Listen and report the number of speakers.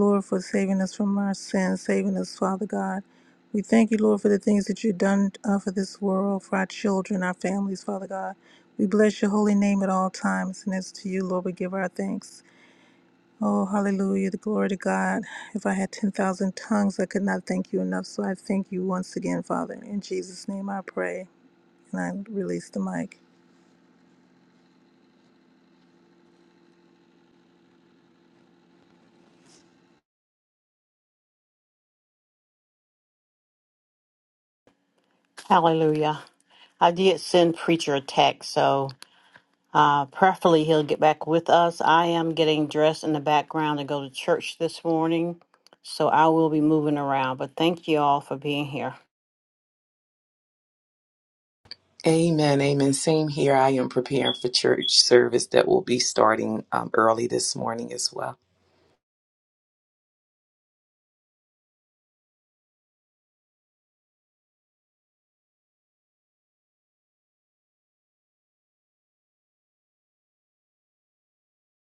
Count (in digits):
3